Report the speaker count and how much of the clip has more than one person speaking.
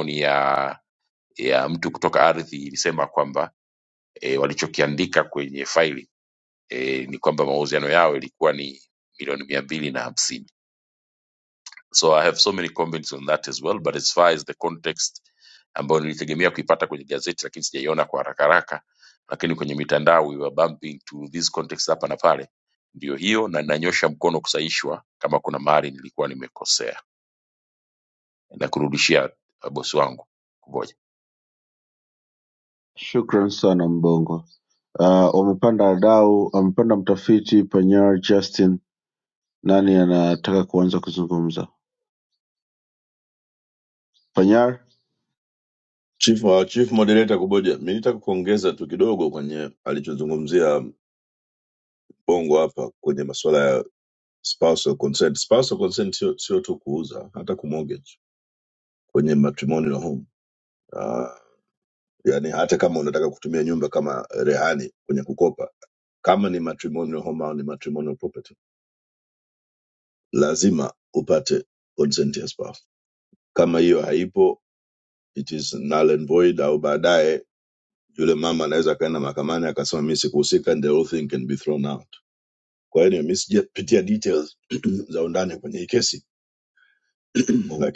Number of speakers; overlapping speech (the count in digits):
3, no overlap